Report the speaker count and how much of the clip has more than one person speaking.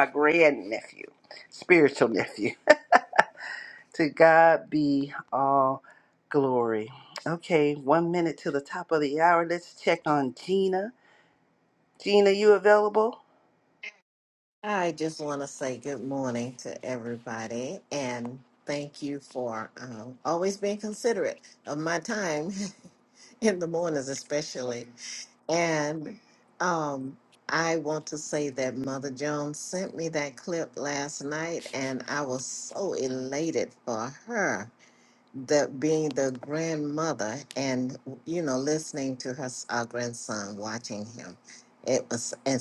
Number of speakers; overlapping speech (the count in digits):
2, no overlap